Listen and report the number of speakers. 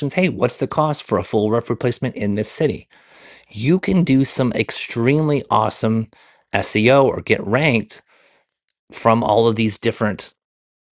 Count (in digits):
1